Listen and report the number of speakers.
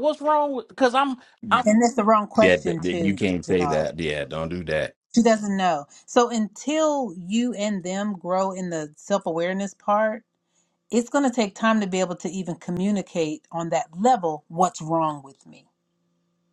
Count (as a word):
three